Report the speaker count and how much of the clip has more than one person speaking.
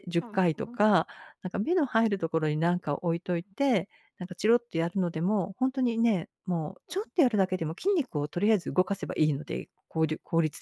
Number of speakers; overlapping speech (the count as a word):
one, no overlap